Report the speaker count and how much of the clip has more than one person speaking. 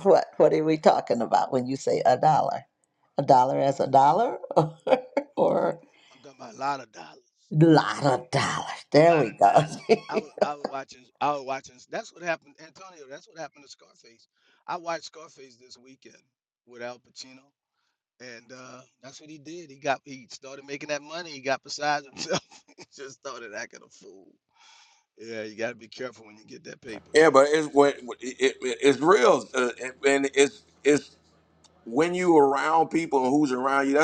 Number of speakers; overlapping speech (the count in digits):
3, about 2%